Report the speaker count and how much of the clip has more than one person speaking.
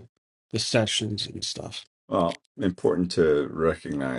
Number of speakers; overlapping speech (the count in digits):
2, no overlap